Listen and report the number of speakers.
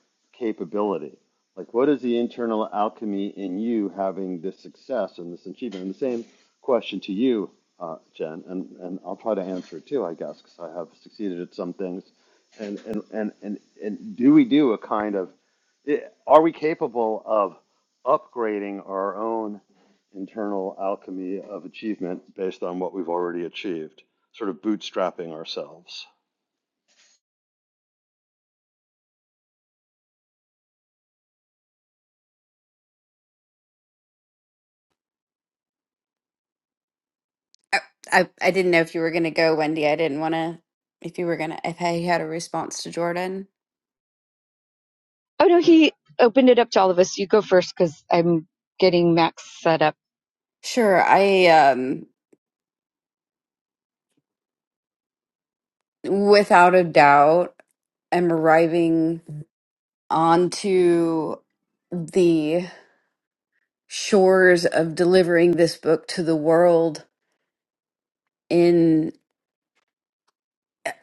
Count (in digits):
3